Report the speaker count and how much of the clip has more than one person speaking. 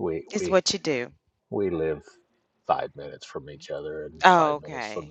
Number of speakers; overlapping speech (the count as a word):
two, about 22%